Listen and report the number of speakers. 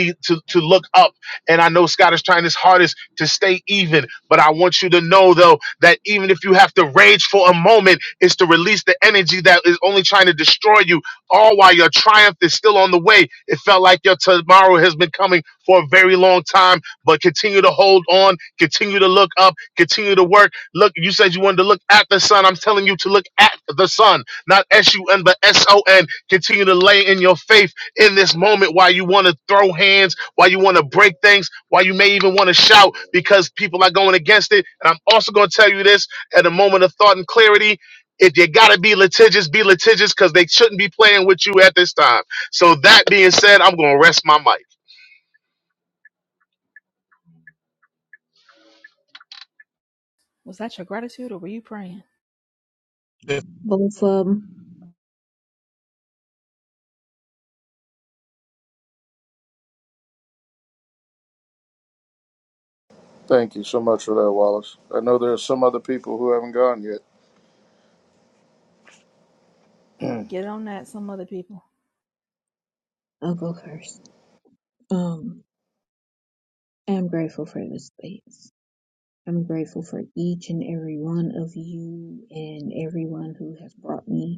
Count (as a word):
four